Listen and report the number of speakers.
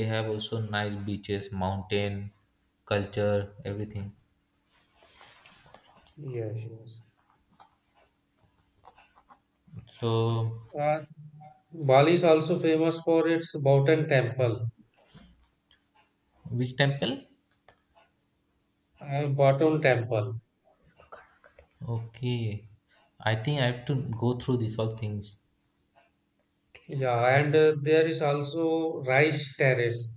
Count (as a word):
two